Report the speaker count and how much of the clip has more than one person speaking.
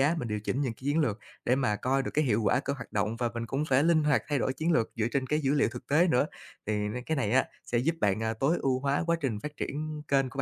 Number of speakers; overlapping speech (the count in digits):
1, no overlap